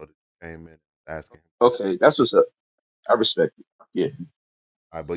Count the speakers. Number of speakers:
2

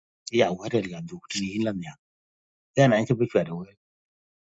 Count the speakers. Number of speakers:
1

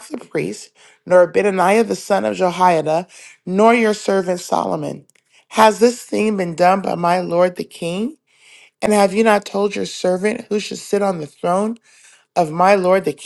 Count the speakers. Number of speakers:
1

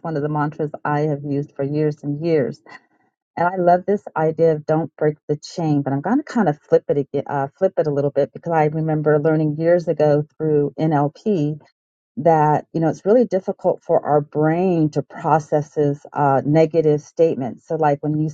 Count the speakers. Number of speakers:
1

